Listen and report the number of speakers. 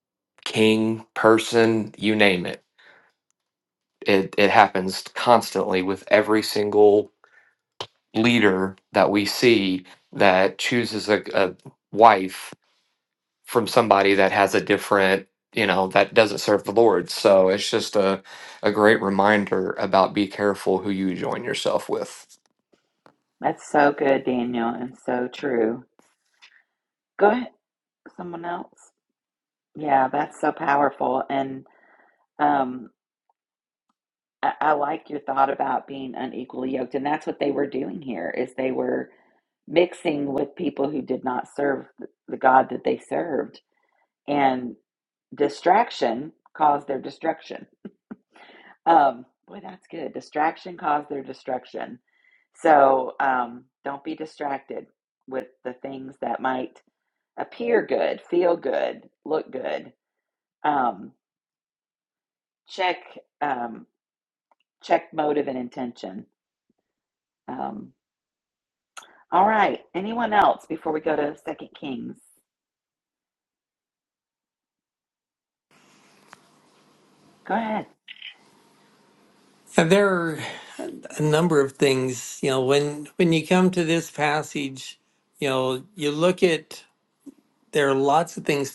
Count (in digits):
3